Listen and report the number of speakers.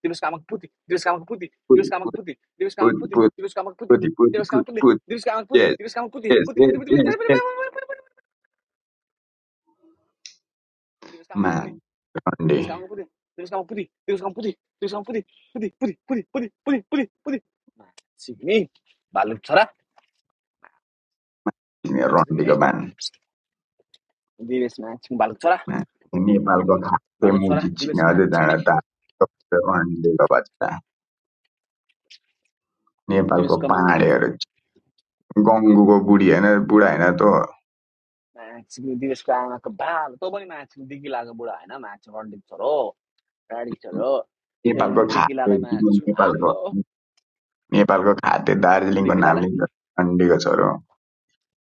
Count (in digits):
2